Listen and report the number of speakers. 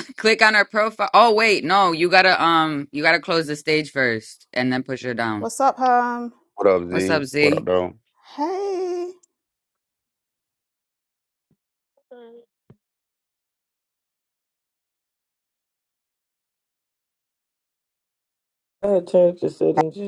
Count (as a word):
four